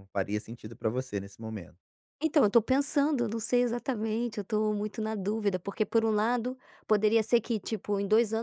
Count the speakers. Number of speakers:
2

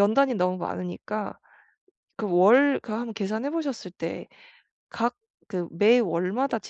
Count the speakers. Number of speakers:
1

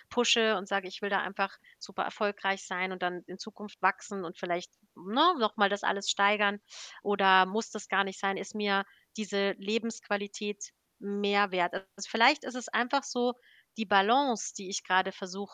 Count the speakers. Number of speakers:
1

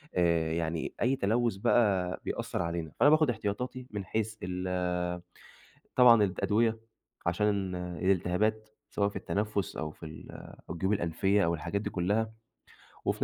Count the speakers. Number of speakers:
1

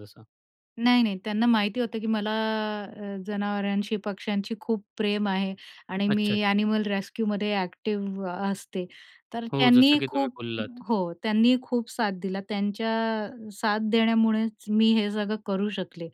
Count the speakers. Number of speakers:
2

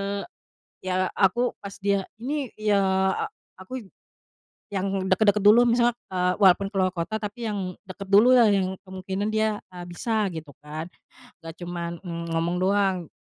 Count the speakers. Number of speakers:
1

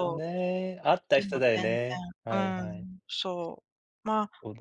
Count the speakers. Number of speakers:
2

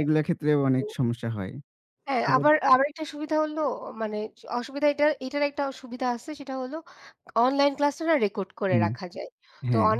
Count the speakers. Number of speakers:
2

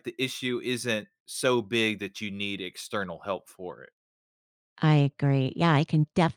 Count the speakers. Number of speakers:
2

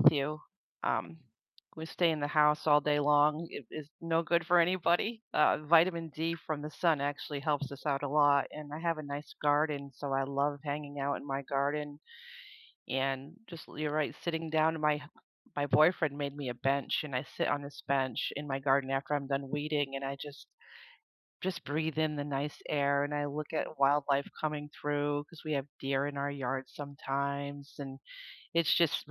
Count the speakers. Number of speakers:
1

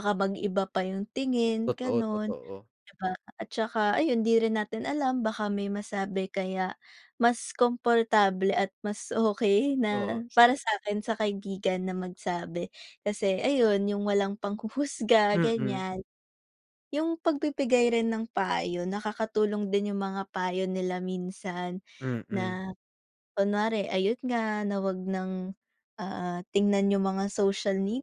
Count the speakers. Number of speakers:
2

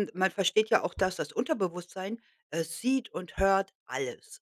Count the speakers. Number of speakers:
1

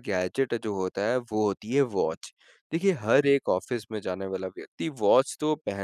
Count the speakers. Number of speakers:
1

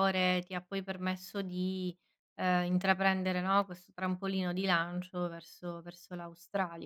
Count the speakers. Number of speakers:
1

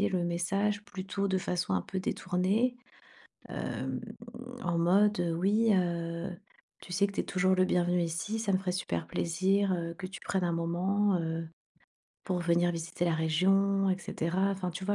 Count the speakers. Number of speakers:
1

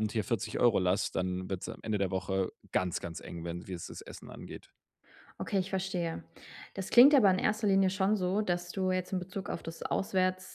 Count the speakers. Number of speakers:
2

